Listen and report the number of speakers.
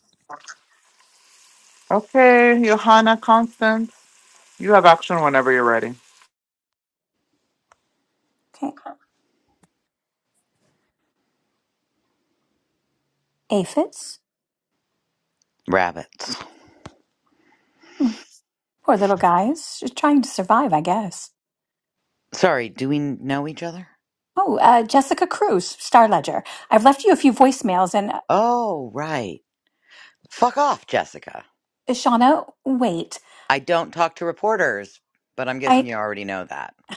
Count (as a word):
three